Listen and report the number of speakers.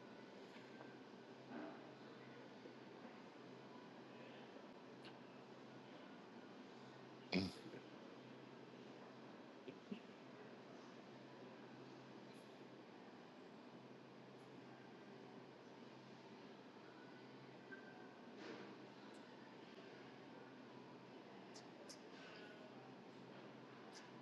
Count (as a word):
zero